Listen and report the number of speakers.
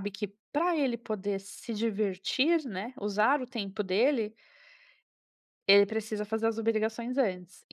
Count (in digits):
1